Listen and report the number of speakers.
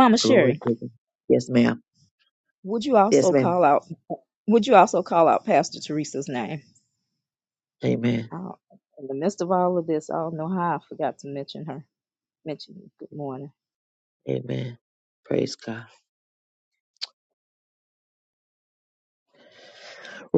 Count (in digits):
2